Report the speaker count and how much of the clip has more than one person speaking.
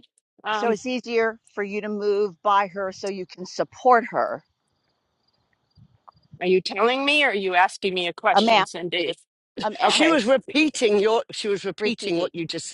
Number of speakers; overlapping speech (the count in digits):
3, about 14%